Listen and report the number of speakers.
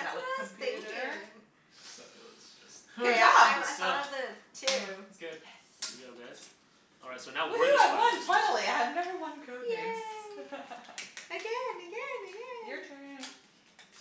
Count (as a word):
four